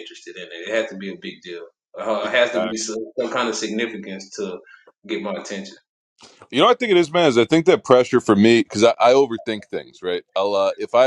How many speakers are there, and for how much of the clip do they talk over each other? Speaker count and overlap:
2, no overlap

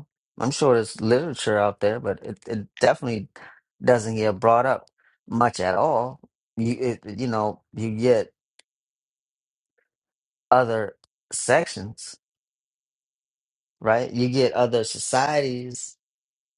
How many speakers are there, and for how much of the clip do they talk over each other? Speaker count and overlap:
1, no overlap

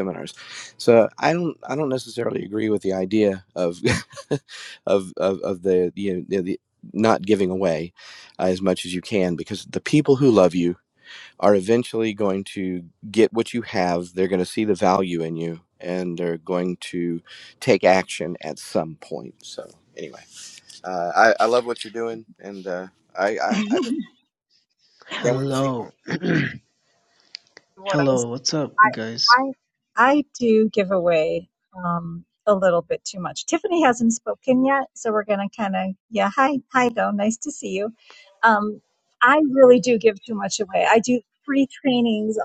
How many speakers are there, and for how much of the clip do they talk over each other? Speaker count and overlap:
3, about 3%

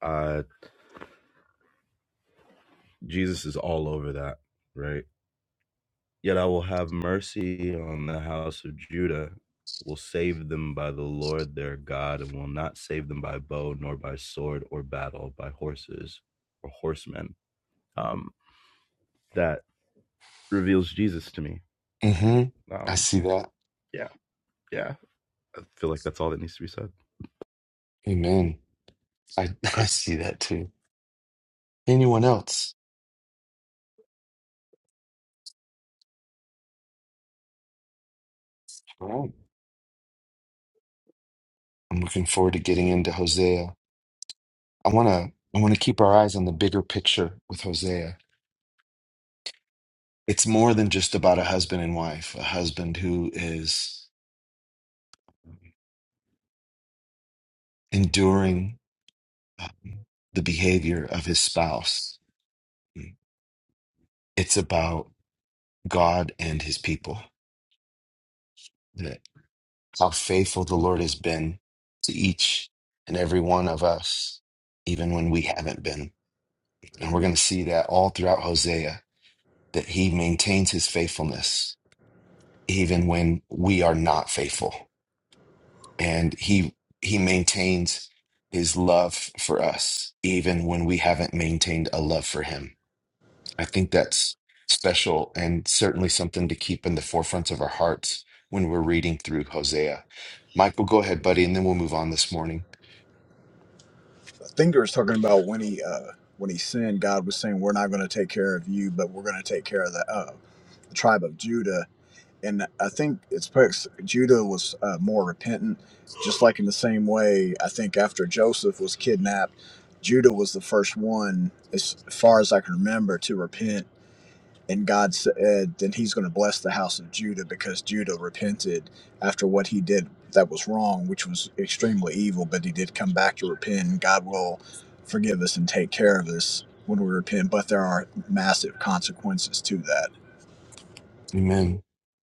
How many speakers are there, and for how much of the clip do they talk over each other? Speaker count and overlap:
3, under 1%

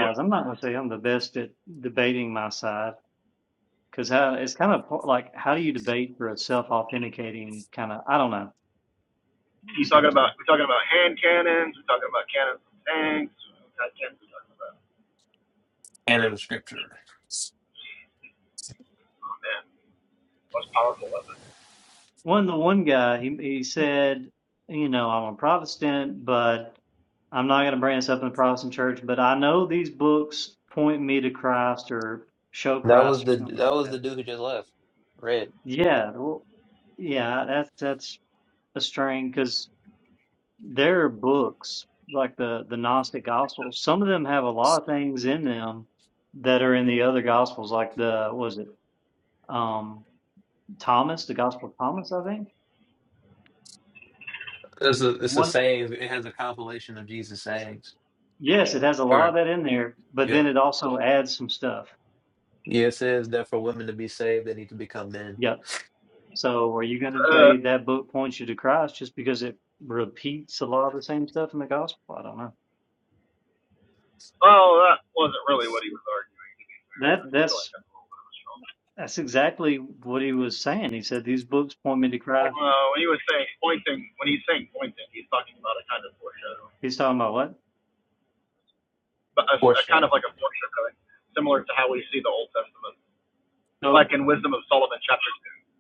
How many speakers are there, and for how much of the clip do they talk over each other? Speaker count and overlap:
3, about 5%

